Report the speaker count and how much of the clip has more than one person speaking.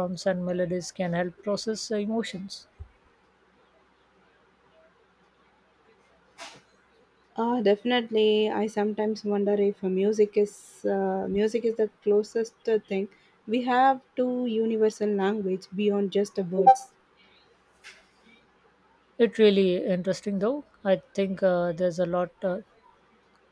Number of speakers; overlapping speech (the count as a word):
two, no overlap